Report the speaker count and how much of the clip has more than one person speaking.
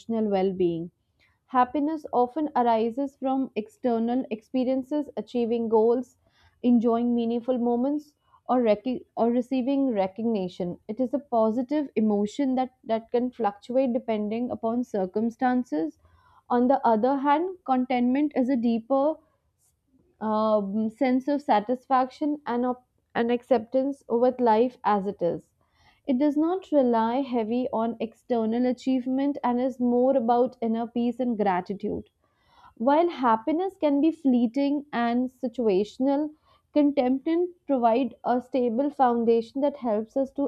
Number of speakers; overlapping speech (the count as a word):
one, no overlap